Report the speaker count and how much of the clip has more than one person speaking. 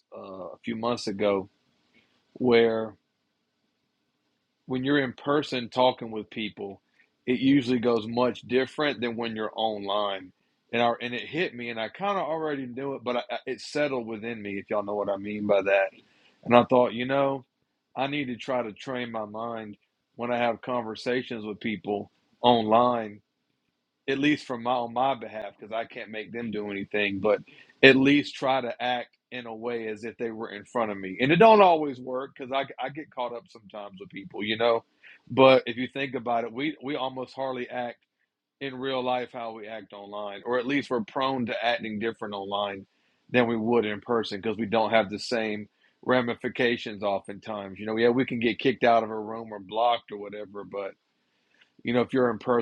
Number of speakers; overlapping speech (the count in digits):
1, no overlap